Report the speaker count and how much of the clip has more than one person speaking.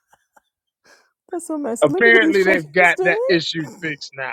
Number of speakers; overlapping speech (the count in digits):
2, about 33%